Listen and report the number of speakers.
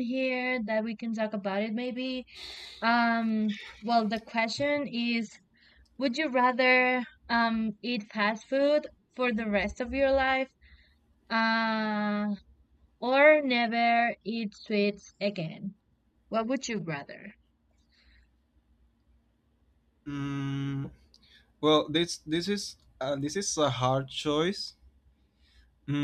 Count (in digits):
2